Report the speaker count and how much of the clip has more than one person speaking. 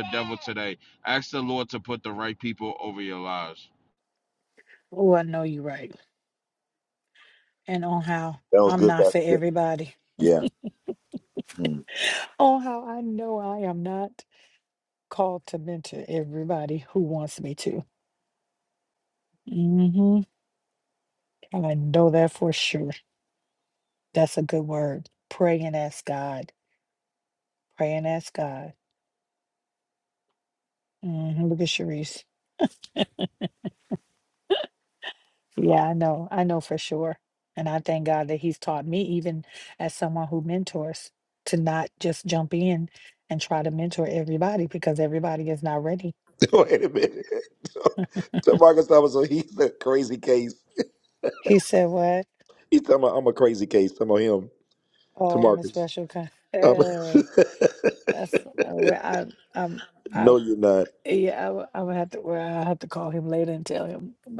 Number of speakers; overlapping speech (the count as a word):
three, about 3%